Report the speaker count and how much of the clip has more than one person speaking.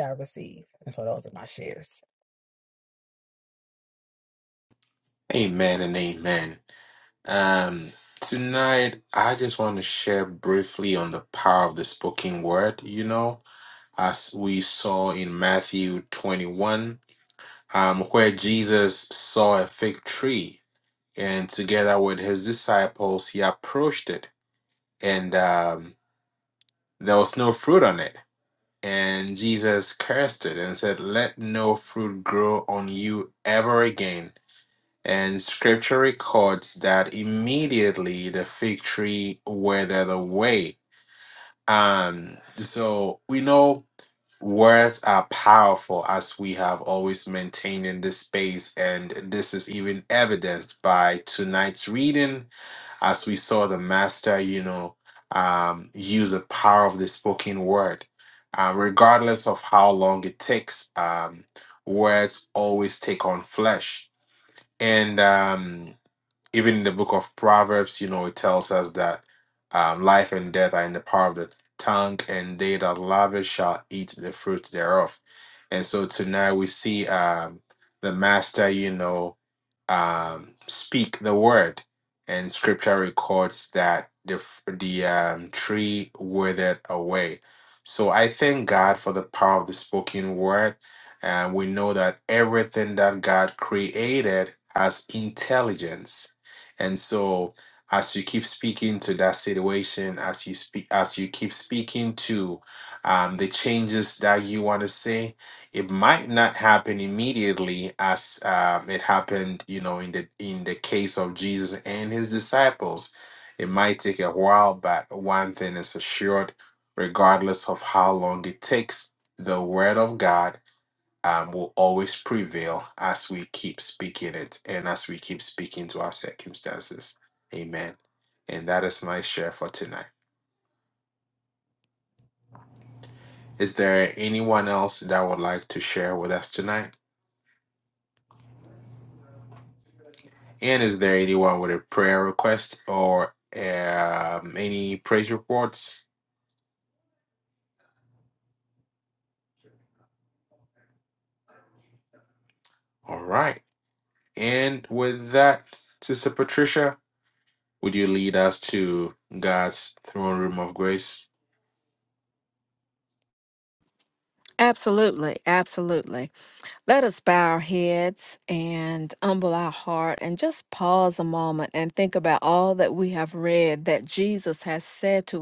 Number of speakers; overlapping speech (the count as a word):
three, no overlap